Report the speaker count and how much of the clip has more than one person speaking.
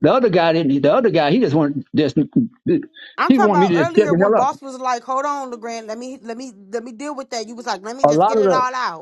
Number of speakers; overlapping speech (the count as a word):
two, about 21%